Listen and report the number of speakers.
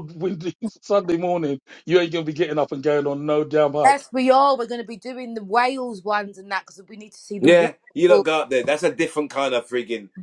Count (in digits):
3